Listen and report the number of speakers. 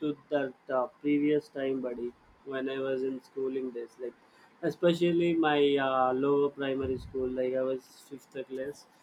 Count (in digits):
1